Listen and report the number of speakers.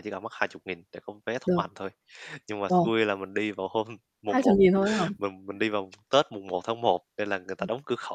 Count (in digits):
2